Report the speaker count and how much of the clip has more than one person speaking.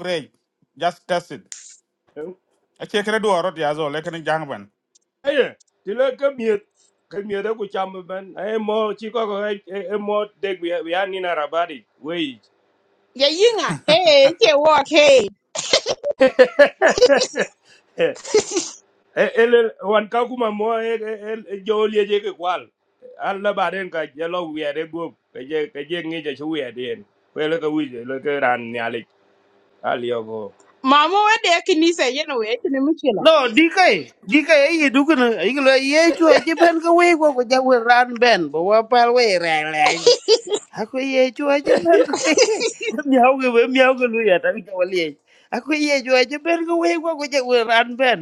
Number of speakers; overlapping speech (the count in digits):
4, under 1%